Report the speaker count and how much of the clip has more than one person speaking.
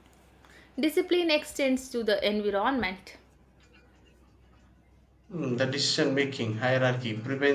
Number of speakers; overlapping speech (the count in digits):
2, no overlap